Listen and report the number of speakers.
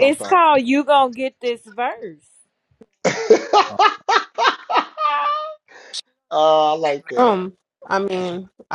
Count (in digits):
3